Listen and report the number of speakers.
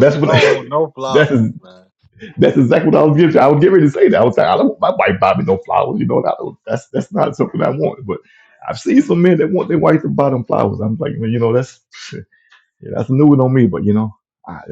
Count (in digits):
2